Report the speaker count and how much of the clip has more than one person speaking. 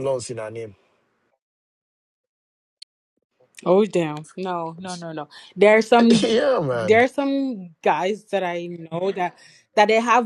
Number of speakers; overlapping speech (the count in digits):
2, about 3%